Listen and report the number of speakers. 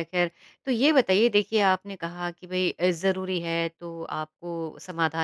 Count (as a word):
one